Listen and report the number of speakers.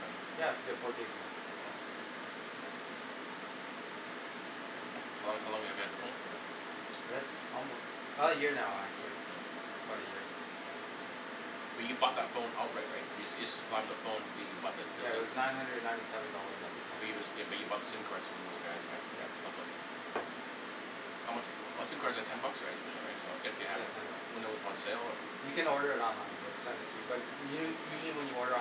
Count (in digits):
2